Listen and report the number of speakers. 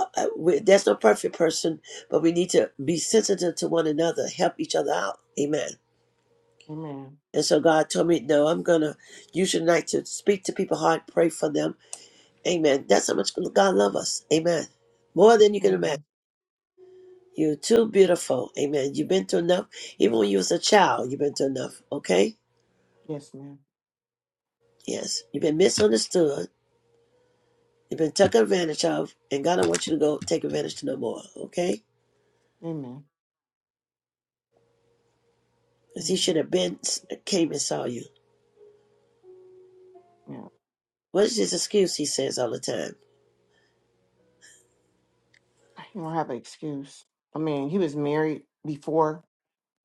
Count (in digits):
2